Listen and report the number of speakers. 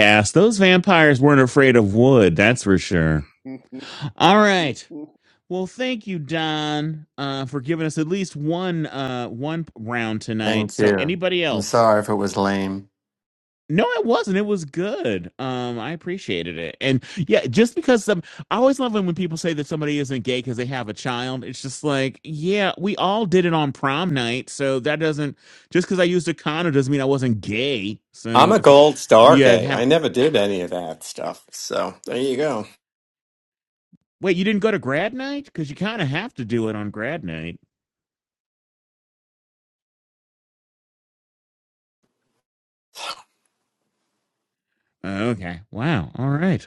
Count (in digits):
2